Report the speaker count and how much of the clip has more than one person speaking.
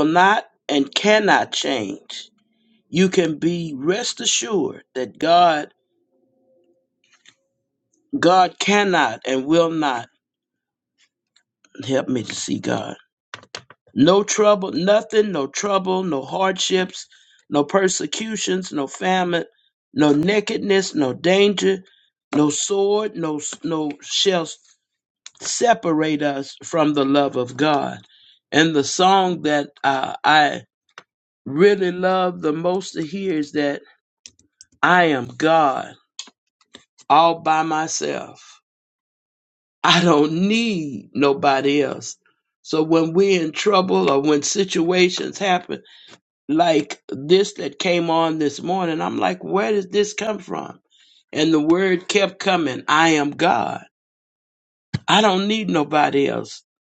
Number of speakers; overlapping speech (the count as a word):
one, no overlap